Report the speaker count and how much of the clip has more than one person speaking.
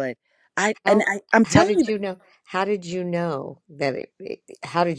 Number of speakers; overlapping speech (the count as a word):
two, about 14%